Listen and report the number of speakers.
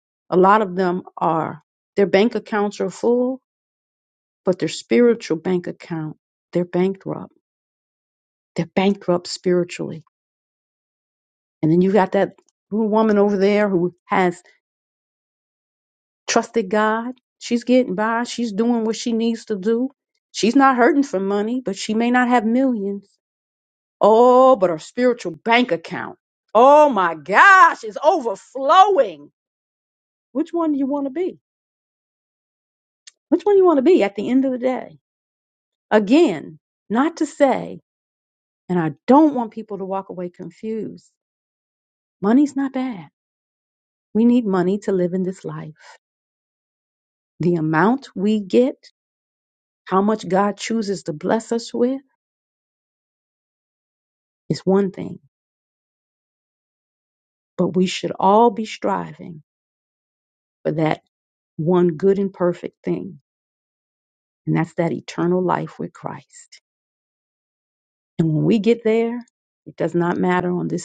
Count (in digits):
1